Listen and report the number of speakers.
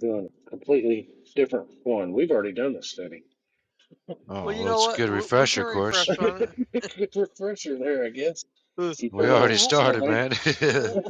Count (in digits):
3